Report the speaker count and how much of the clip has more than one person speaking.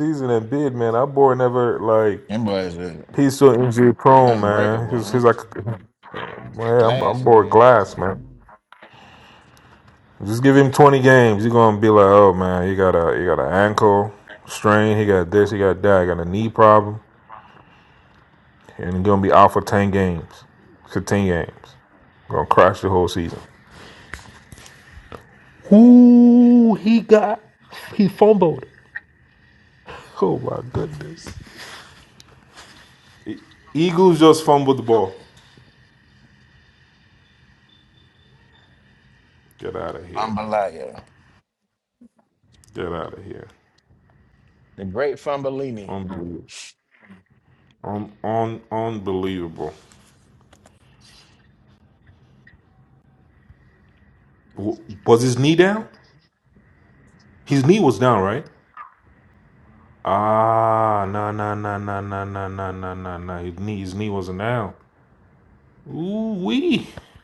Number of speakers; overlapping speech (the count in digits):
2, about 3%